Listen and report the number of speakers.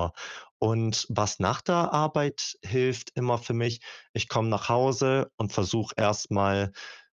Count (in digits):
1